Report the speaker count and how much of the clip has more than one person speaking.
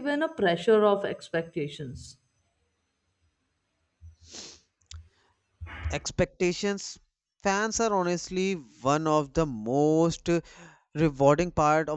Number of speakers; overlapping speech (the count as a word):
two, no overlap